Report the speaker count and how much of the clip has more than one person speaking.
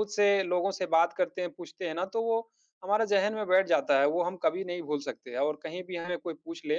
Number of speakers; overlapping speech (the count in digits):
1, no overlap